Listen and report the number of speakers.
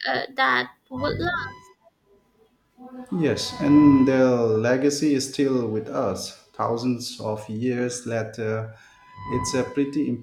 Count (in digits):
2